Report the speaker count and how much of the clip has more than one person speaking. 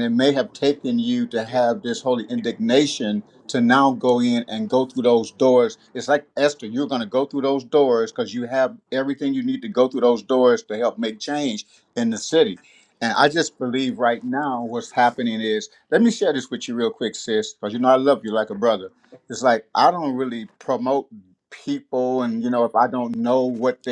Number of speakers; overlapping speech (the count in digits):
1, no overlap